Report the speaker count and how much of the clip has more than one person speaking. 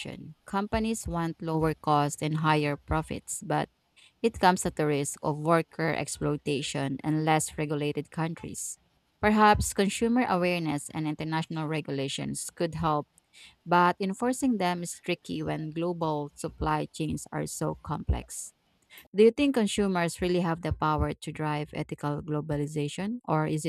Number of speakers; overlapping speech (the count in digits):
1, no overlap